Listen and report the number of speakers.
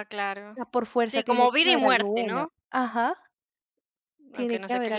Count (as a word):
two